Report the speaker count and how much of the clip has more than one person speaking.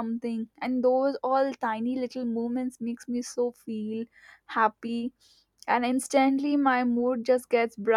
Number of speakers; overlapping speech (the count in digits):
1, no overlap